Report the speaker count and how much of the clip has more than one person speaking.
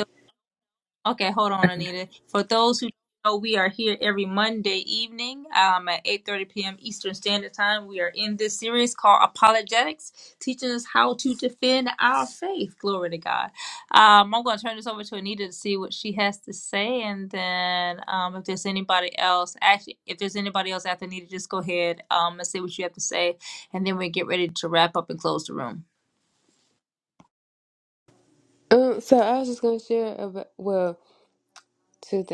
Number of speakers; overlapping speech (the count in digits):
2, no overlap